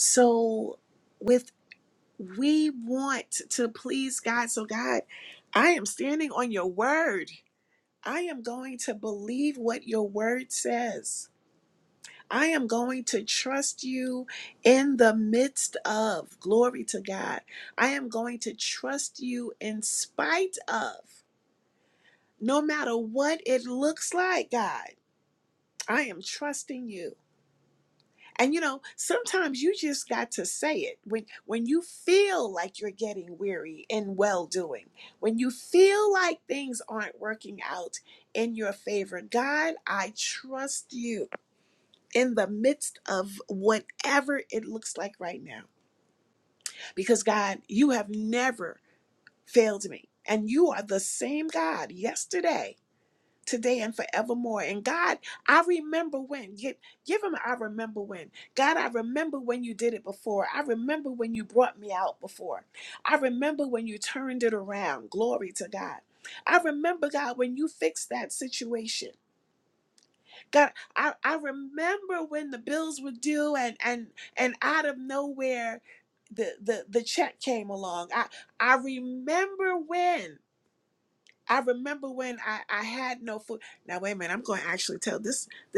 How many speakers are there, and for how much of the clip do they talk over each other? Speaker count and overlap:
one, no overlap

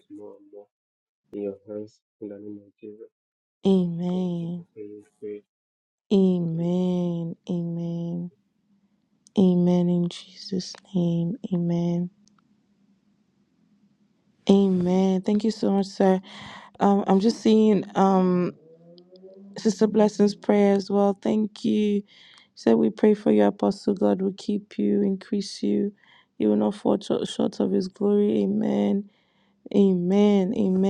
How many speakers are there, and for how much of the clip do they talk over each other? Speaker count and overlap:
two, about 2%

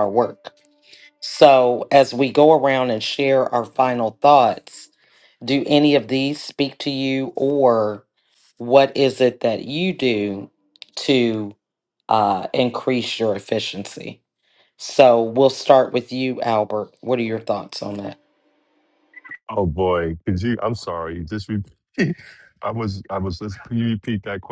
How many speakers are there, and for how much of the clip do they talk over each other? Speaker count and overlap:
two, no overlap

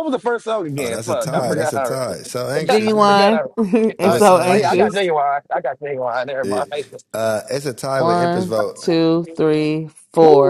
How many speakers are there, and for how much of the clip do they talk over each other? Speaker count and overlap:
three, about 38%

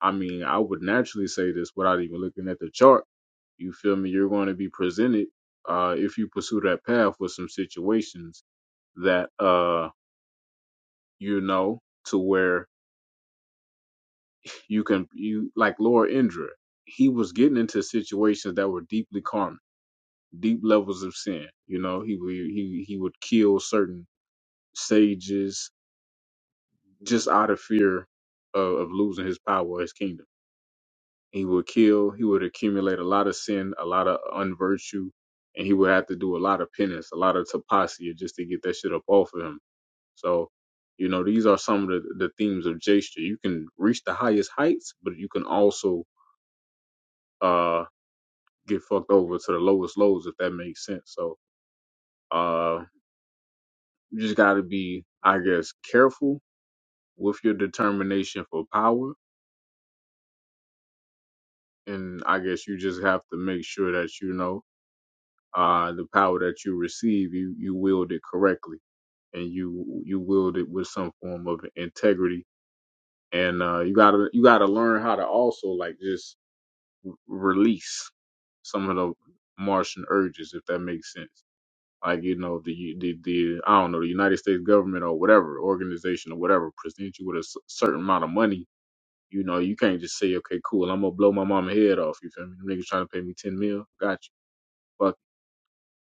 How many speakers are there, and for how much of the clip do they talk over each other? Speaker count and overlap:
one, no overlap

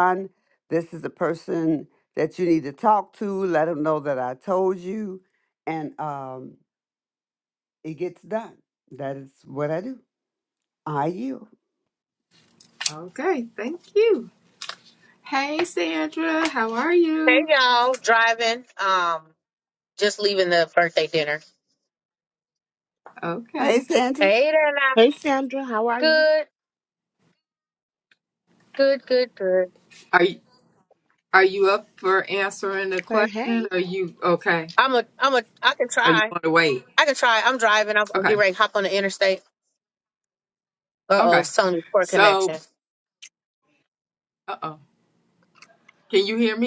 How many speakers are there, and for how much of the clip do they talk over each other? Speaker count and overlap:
four, about 6%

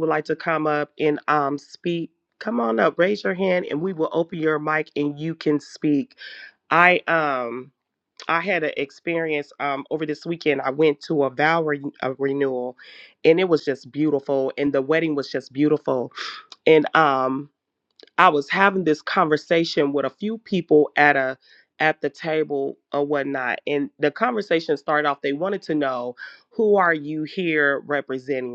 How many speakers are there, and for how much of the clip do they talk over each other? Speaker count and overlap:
one, no overlap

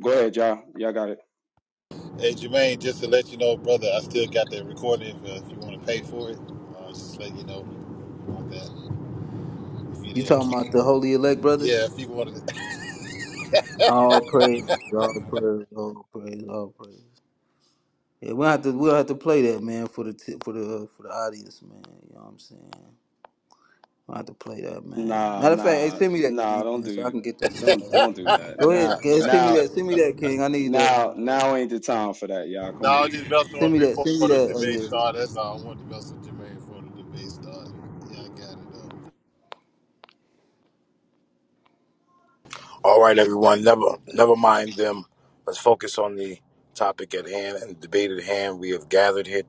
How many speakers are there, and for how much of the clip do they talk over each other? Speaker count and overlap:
four, about 15%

